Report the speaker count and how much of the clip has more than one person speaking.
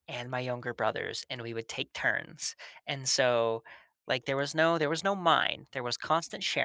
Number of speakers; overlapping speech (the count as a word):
one, no overlap